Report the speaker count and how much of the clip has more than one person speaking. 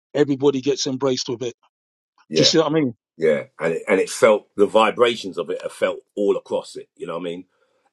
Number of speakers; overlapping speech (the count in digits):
2, about 2%